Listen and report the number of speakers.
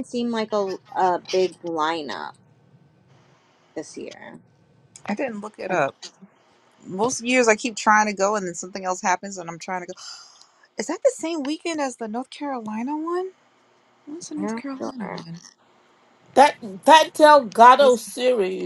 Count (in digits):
3